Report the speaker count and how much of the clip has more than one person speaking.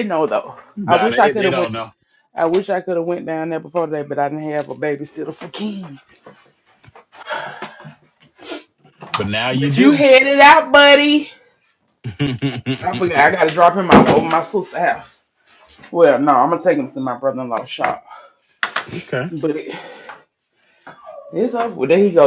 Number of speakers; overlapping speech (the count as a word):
two, about 6%